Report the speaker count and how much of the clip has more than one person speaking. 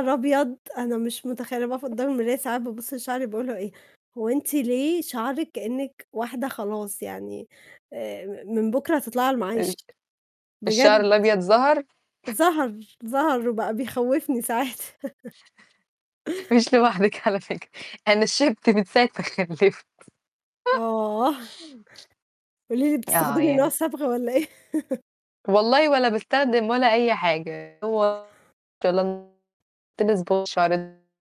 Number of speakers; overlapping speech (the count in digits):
2, about 4%